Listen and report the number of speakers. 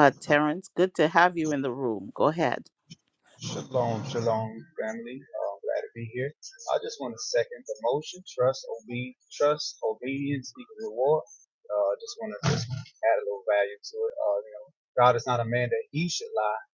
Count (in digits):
2